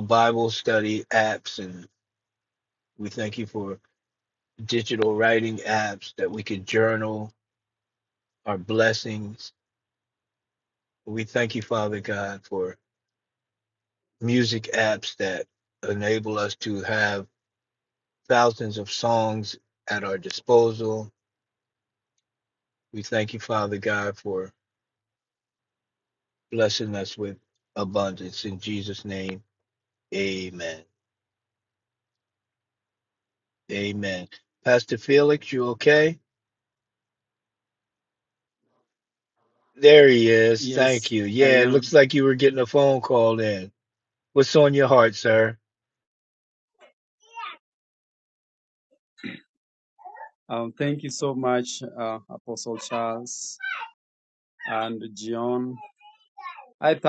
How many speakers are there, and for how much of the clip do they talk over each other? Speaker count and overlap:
two, about 1%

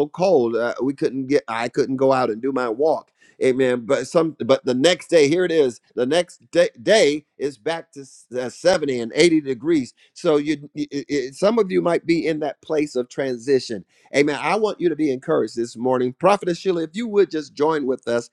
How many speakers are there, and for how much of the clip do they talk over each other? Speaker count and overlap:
one, no overlap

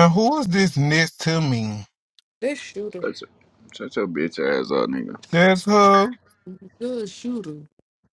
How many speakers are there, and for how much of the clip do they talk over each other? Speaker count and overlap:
three, under 1%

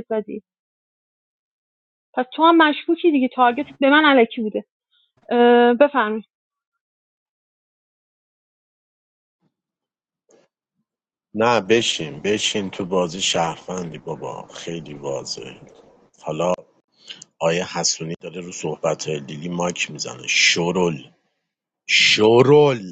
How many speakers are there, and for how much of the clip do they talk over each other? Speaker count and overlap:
two, no overlap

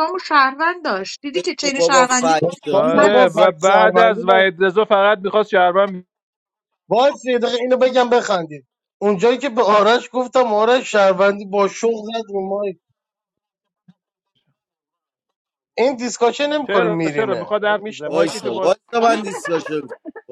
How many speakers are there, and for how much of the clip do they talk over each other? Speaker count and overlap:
four, about 22%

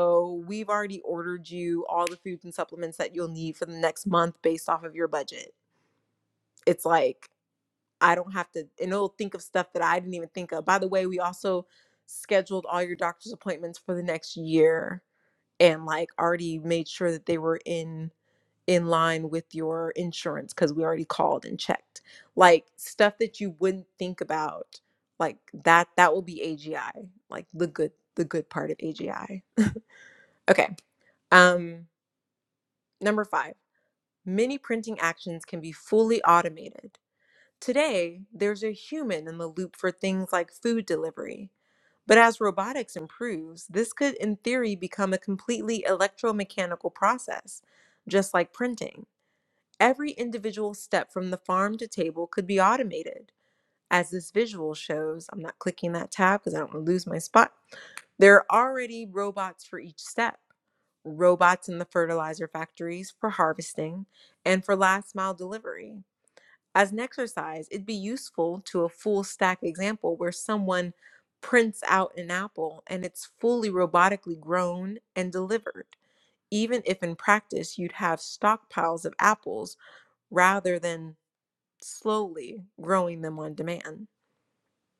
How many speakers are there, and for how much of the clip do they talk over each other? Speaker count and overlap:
one, no overlap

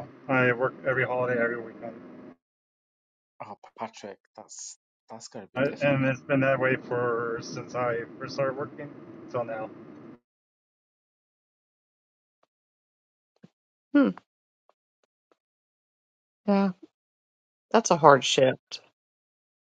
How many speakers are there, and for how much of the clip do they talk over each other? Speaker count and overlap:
three, about 2%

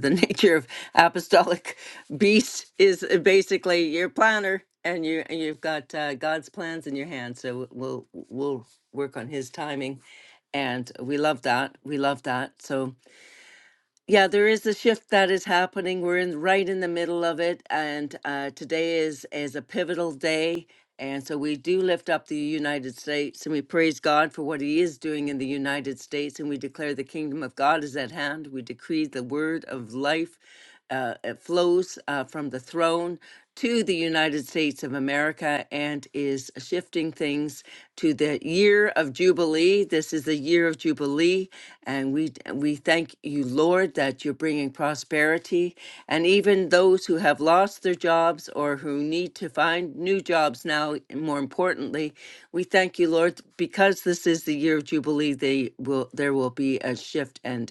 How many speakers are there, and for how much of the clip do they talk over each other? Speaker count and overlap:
one, no overlap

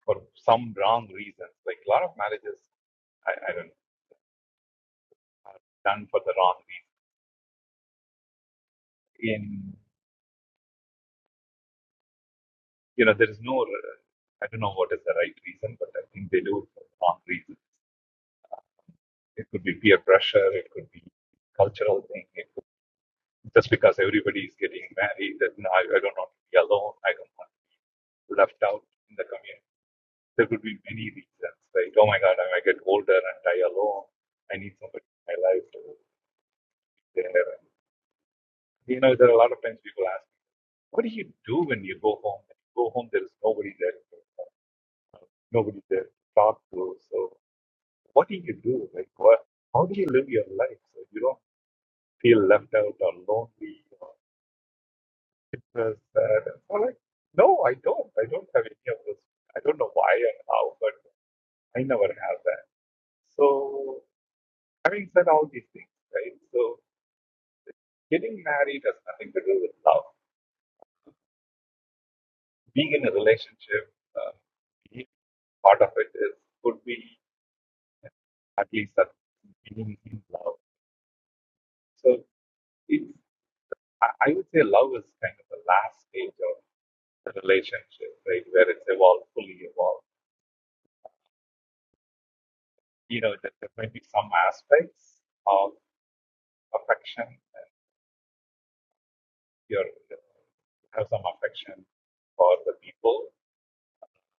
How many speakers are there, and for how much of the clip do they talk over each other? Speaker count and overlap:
one, no overlap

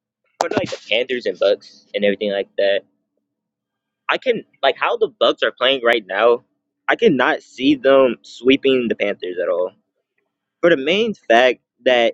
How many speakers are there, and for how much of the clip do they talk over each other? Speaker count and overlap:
one, no overlap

